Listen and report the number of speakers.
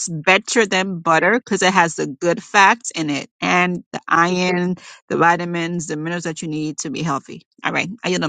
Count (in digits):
1